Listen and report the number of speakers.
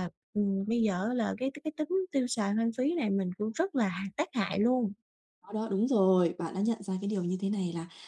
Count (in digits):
2